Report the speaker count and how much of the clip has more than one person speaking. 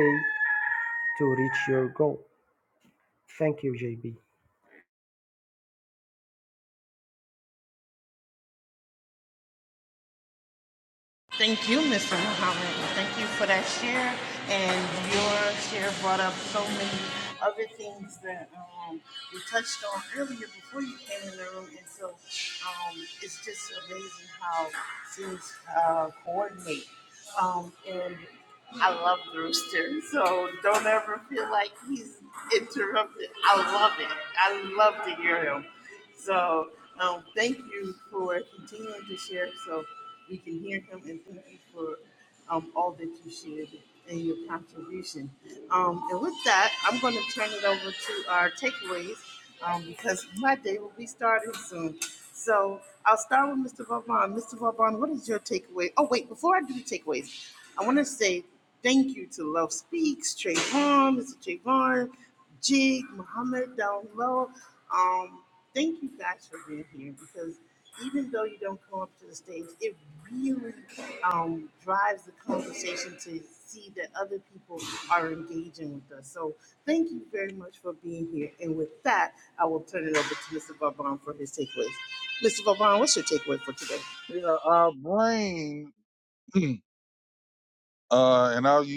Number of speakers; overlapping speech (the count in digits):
3, no overlap